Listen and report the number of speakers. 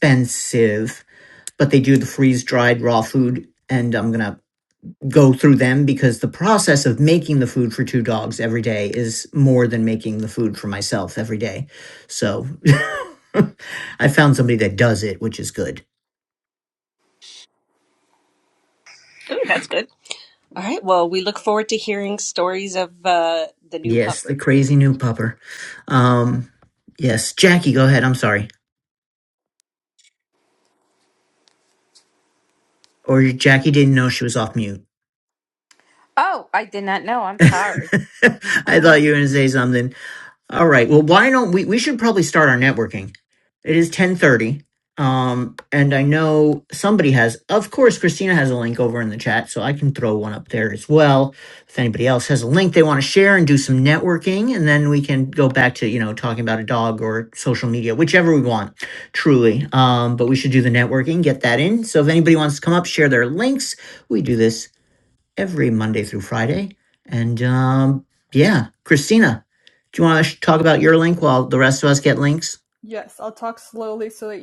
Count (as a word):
four